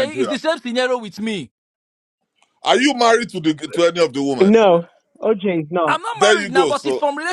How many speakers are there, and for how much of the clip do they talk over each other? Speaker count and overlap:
3, about 19%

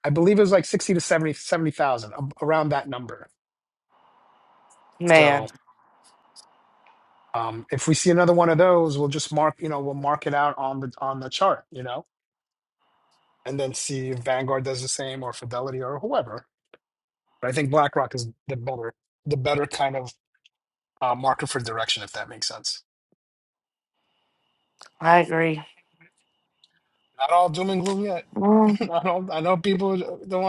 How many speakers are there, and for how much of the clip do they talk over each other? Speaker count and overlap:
2, about 1%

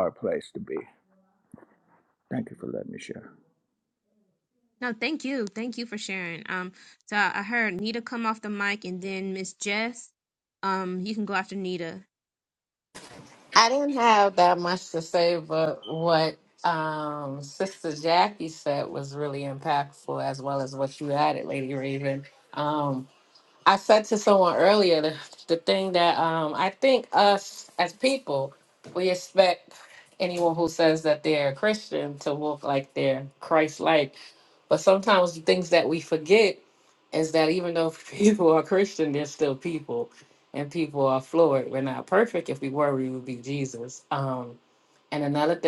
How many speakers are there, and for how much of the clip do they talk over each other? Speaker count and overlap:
3, no overlap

